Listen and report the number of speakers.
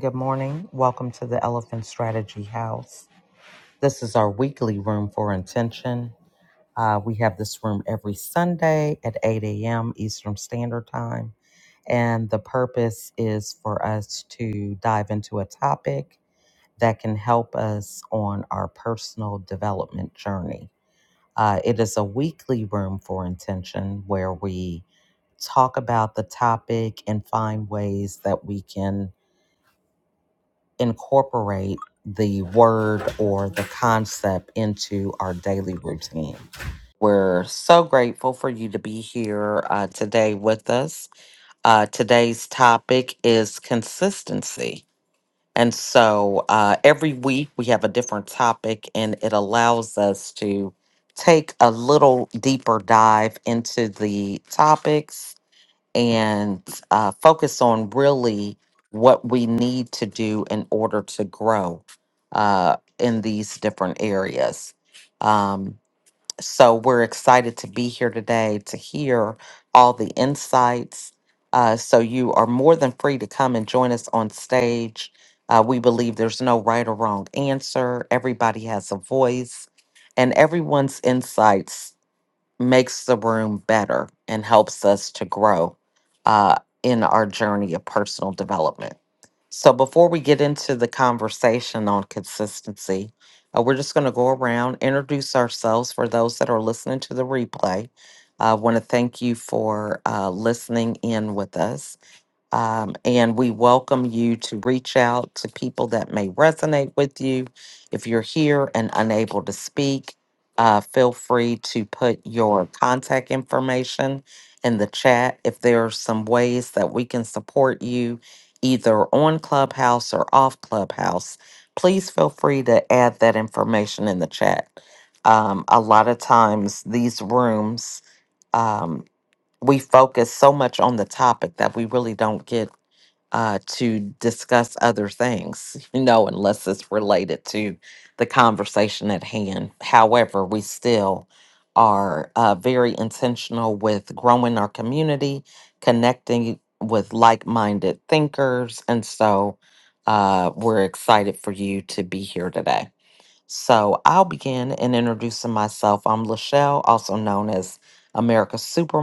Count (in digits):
1